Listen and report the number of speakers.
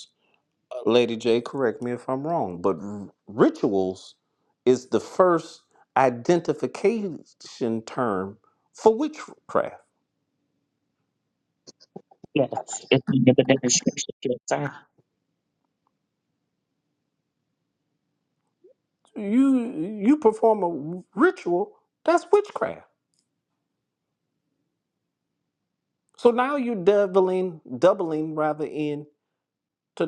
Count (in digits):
2